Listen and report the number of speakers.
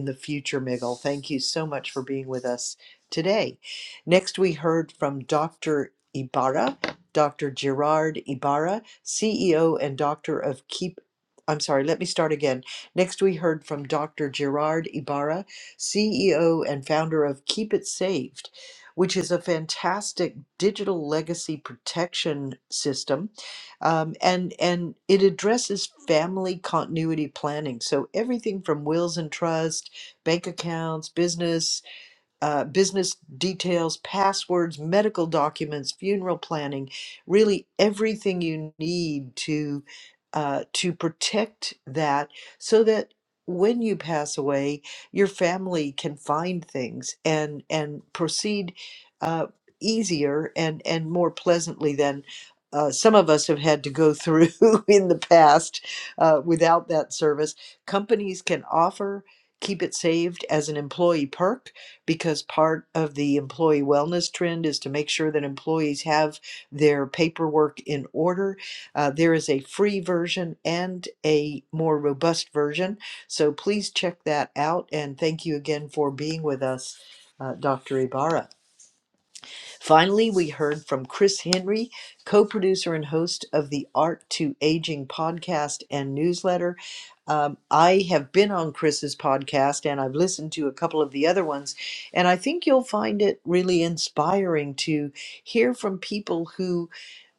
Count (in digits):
1